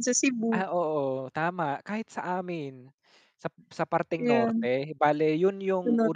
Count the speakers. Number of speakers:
2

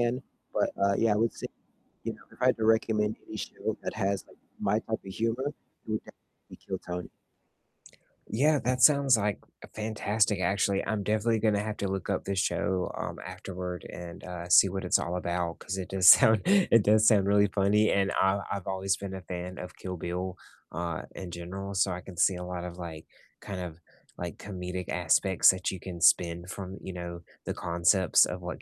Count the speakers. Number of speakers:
2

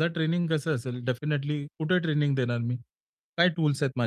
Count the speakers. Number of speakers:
1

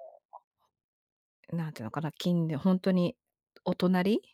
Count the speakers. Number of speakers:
1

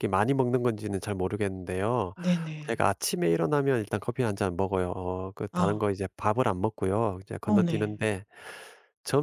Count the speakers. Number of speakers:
2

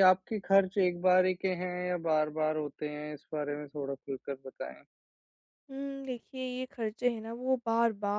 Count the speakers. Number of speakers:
2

